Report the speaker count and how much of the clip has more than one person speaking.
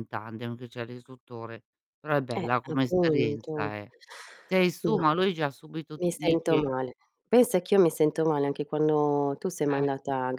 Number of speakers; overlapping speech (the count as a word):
two, about 24%